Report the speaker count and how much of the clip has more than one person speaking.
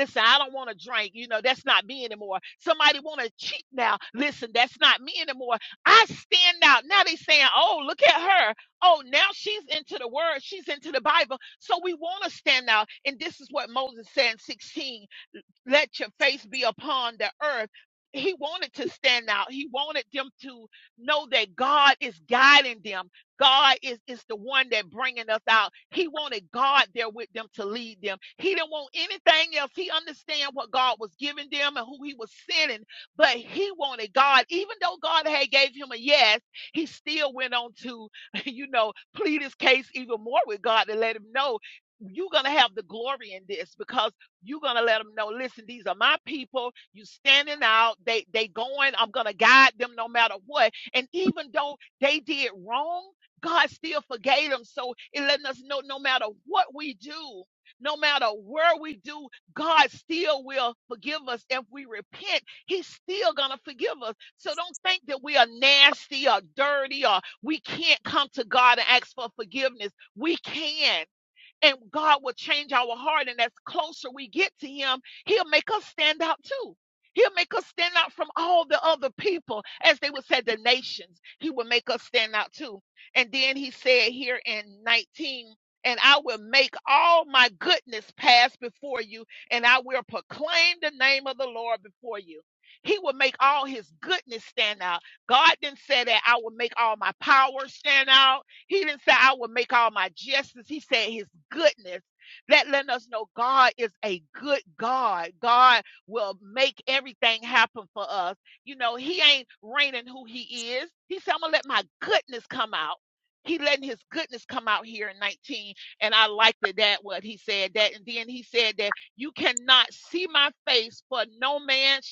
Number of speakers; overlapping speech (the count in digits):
1, no overlap